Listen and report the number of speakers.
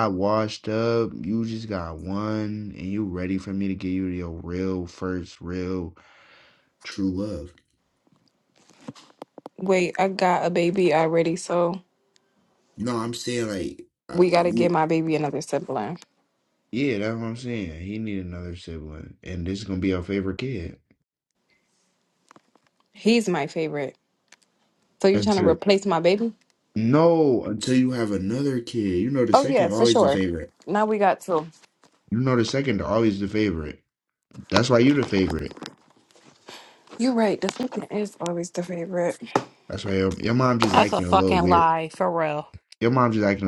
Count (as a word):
three